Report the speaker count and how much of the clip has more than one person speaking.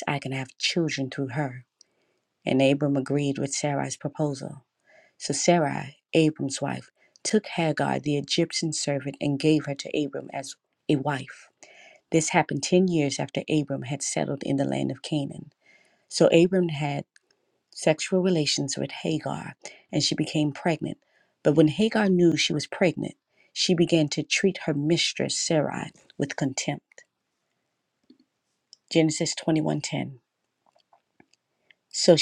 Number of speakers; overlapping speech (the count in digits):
1, no overlap